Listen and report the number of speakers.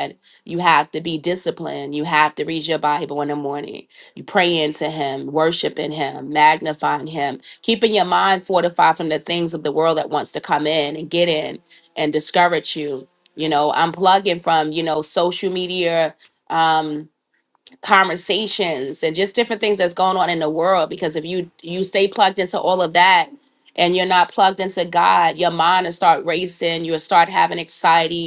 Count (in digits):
1